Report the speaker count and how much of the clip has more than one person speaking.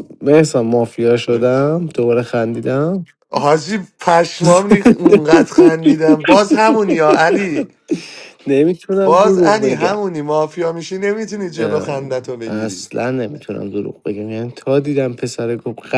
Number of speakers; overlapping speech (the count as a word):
two, about 10%